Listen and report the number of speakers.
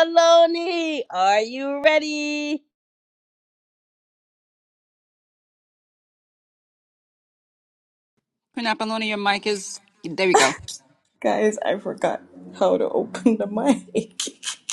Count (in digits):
3